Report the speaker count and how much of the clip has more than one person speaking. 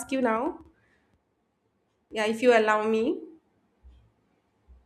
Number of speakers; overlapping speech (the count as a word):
one, no overlap